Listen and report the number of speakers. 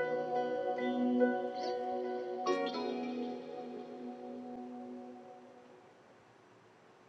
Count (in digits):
0